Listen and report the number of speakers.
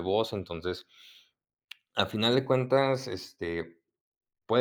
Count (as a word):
one